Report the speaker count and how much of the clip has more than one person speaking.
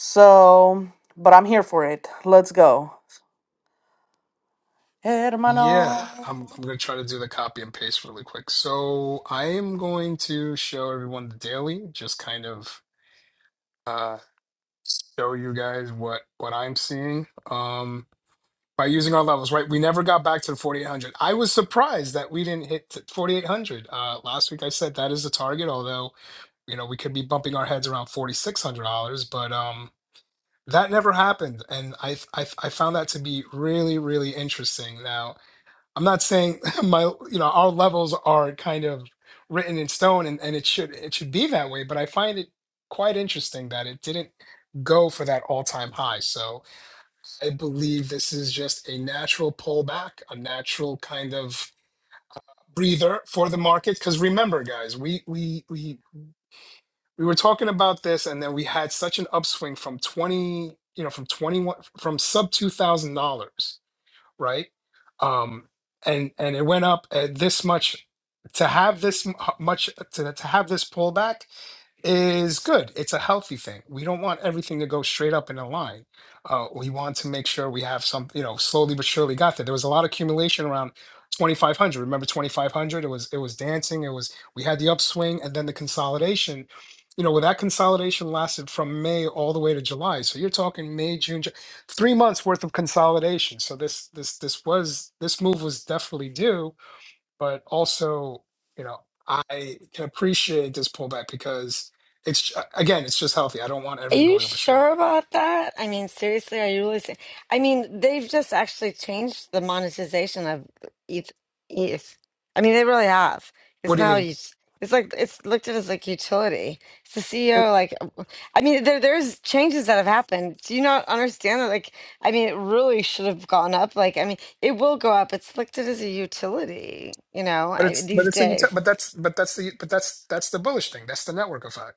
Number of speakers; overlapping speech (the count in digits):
3, about 2%